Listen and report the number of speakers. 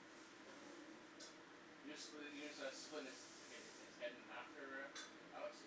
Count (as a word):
one